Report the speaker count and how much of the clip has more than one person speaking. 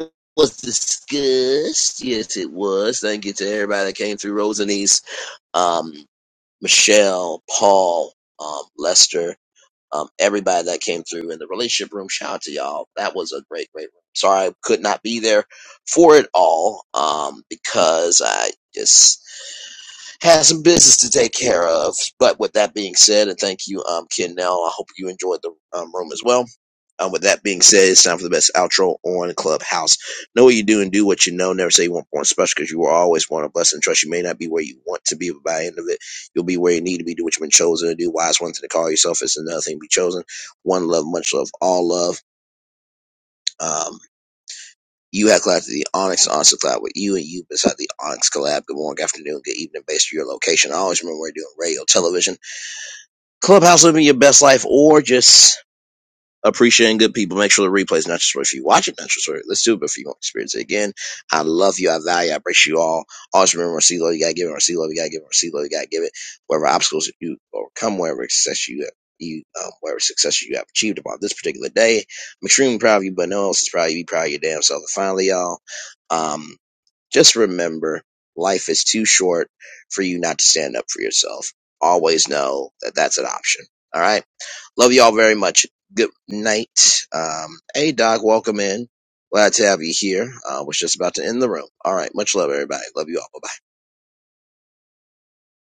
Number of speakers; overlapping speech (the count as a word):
one, no overlap